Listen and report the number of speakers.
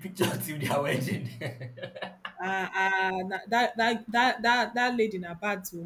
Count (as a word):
two